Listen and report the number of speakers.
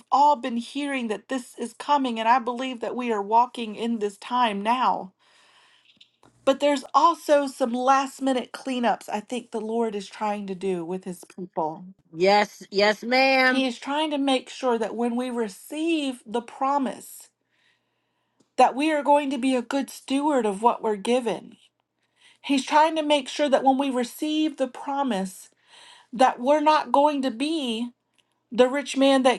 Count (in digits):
2